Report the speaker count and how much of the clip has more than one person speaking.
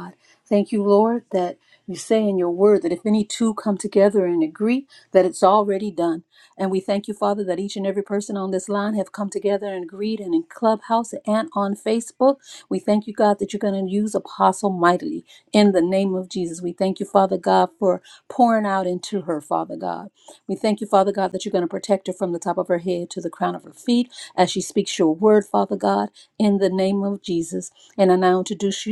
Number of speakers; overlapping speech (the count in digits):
1, no overlap